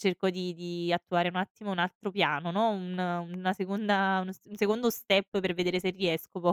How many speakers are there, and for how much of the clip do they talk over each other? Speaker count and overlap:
one, no overlap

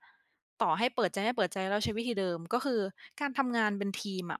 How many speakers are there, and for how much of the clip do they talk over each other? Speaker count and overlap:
one, no overlap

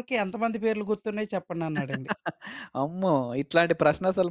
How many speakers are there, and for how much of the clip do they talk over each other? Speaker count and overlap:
two, no overlap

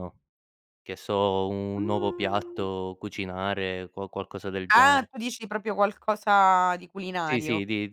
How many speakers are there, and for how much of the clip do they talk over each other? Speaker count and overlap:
two, about 9%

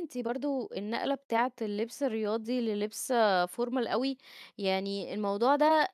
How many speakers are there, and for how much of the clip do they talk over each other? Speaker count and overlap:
one, no overlap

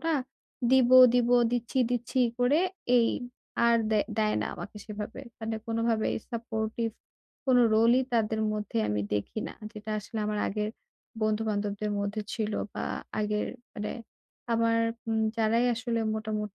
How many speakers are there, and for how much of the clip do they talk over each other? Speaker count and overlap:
one, no overlap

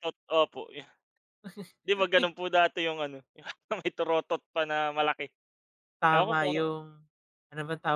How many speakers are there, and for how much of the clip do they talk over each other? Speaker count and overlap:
two, about 8%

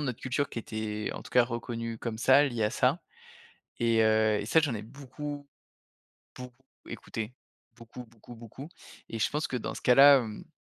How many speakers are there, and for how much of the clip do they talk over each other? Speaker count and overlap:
one, no overlap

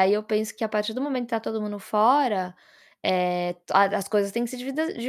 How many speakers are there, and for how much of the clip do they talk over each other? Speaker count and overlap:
one, no overlap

